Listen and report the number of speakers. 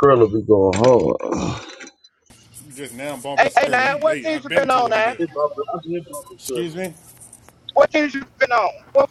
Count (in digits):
3